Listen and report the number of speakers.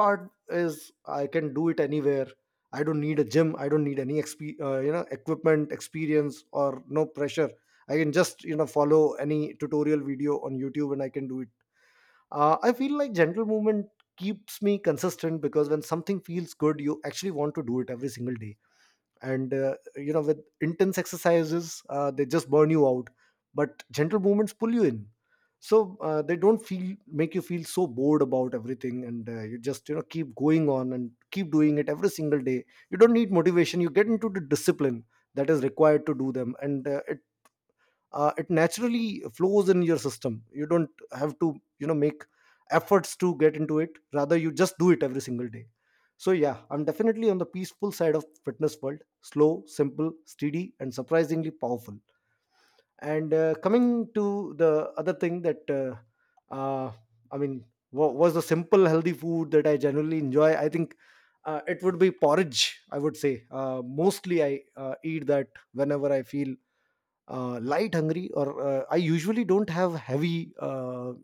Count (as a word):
one